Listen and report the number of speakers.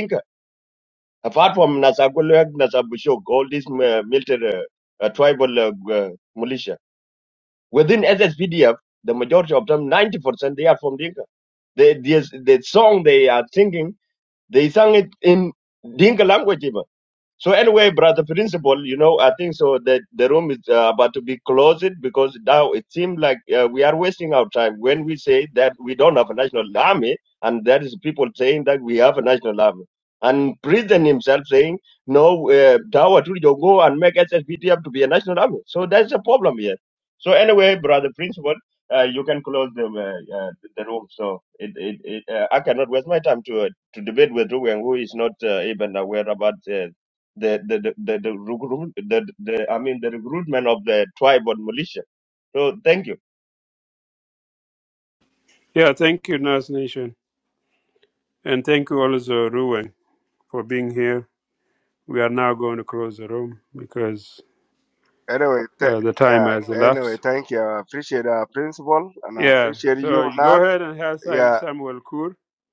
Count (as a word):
three